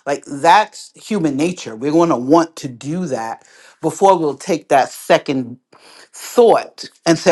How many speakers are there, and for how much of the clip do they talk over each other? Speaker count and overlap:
one, no overlap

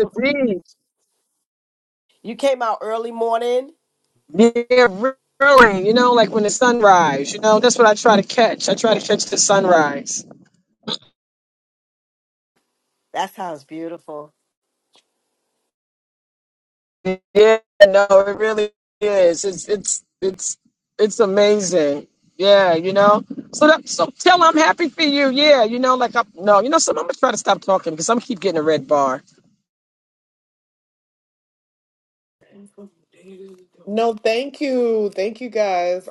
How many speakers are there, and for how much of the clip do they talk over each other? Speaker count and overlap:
three, no overlap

